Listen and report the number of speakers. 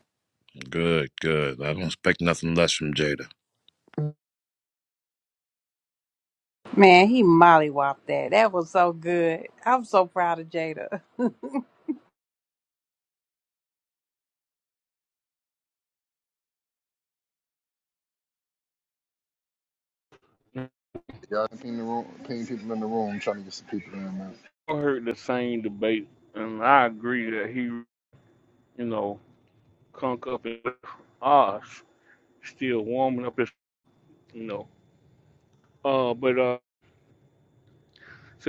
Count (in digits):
4